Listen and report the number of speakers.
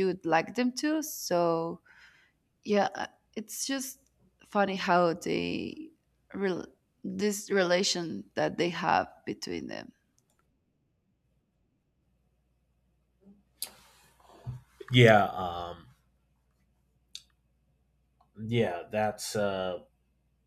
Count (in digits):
2